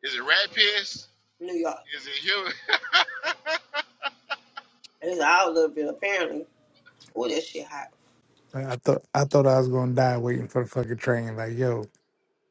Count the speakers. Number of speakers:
three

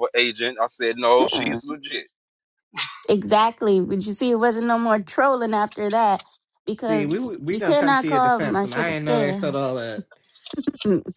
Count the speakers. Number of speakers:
three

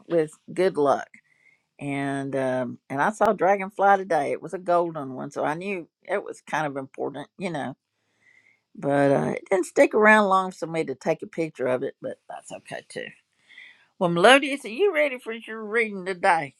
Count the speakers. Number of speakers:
one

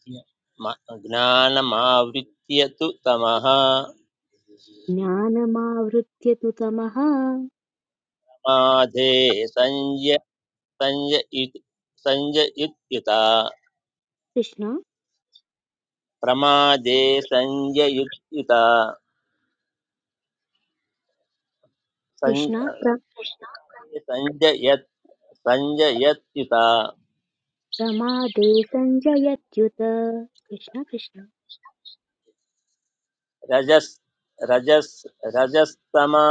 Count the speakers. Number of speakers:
two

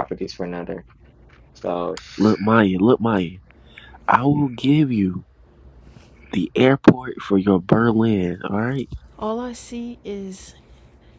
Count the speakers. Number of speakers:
three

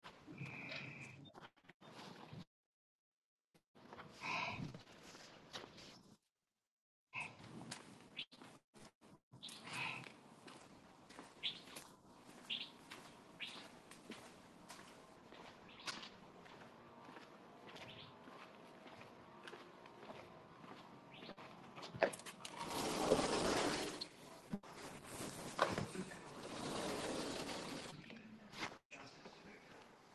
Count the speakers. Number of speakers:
zero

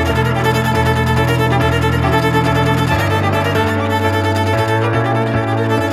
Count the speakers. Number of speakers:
zero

